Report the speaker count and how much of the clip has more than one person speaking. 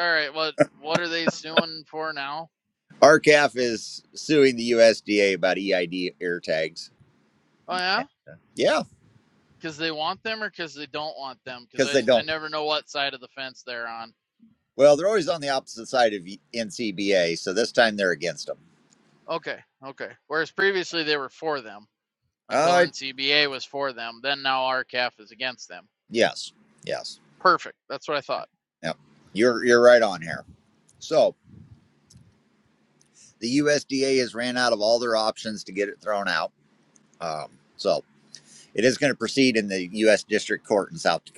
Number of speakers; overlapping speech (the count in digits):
2, about 2%